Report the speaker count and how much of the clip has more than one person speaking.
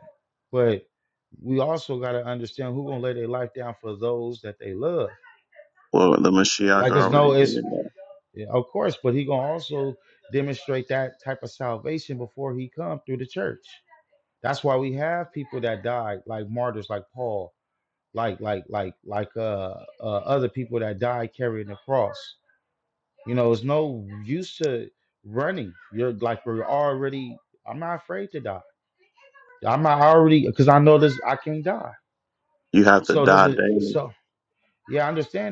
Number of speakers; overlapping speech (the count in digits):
2, about 5%